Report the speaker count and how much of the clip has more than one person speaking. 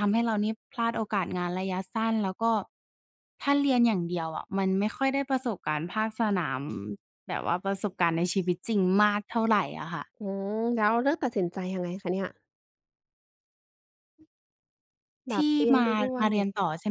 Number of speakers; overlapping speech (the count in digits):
2, about 4%